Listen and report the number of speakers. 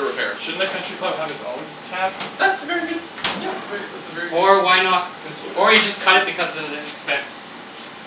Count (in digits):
3